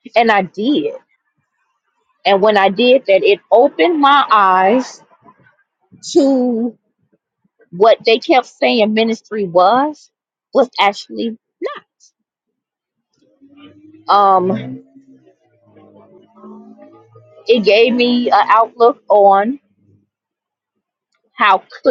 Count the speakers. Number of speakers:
1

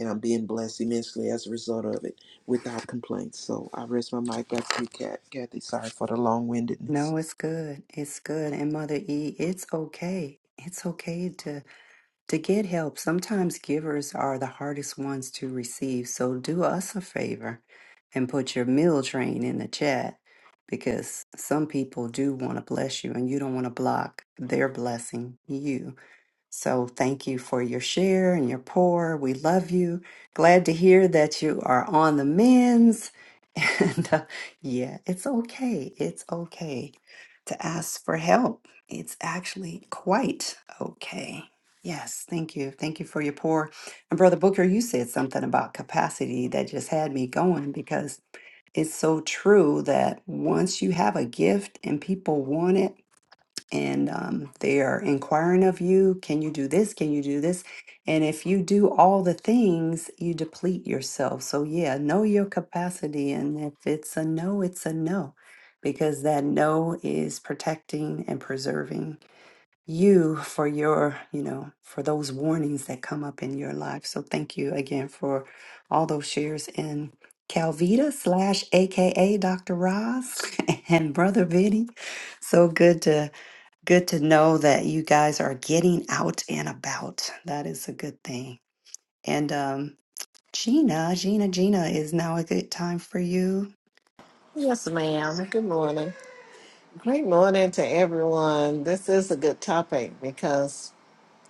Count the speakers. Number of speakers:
3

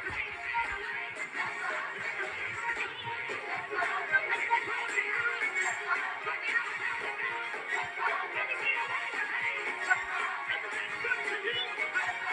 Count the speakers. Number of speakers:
0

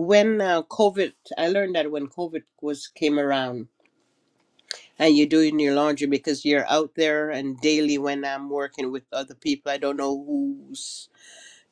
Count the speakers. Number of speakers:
1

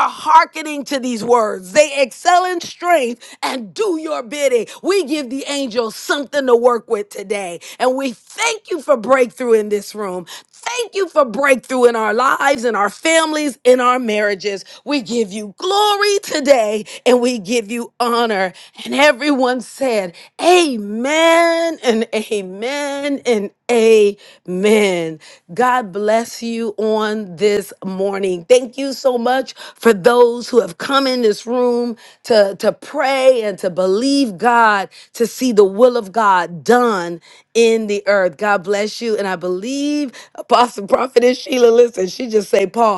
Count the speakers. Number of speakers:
1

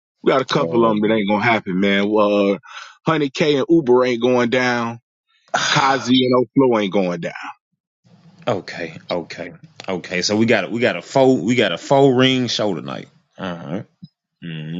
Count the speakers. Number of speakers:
2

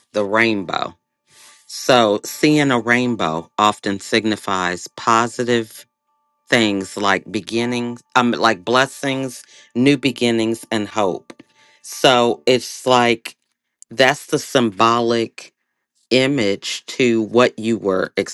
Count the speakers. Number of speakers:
1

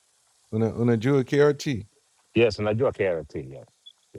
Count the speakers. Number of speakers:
2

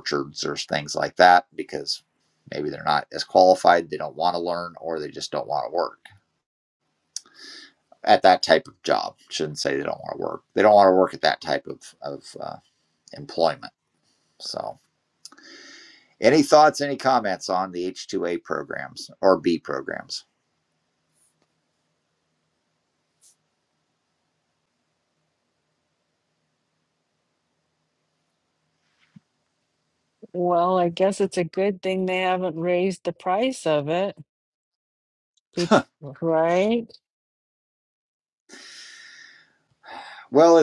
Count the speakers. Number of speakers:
2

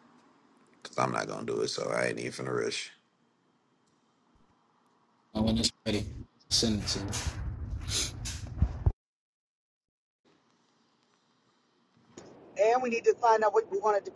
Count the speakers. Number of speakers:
3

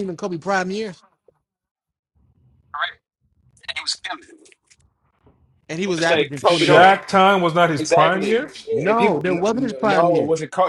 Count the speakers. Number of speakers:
3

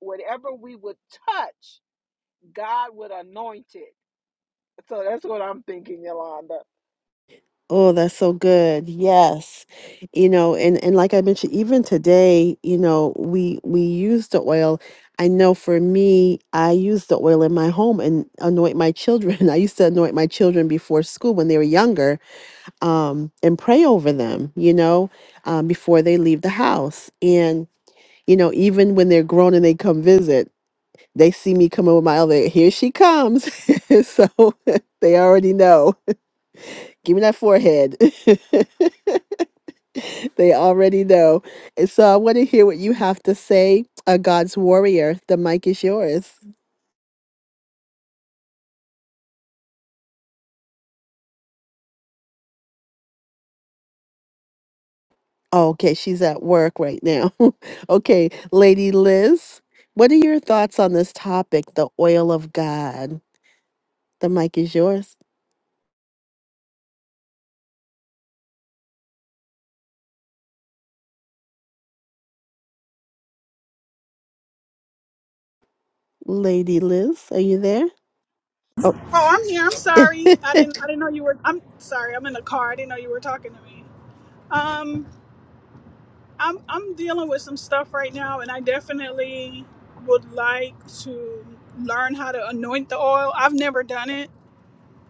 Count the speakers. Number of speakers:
3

